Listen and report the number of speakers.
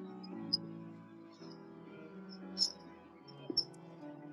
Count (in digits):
0